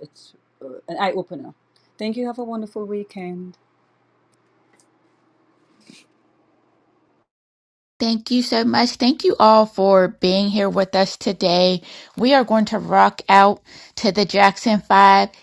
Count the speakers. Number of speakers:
2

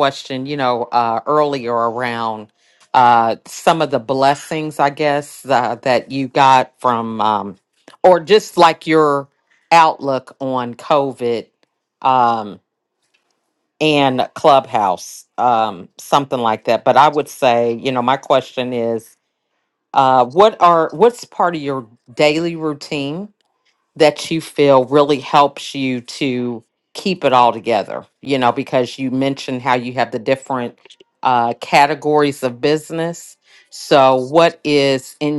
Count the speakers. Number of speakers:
1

